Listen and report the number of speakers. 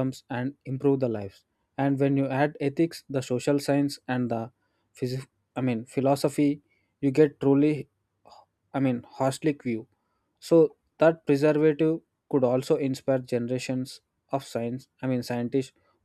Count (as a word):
one